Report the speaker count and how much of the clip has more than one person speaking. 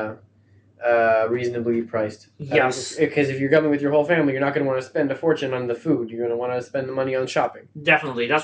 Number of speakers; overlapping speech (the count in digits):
2, about 6%